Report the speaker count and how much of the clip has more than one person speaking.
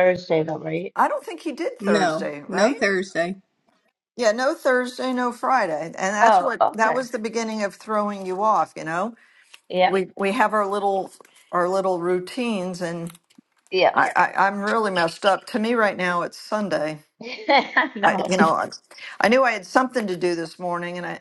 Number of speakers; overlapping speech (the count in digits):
3, about 11%